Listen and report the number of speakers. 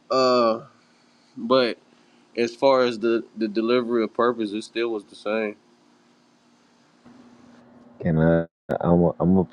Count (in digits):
2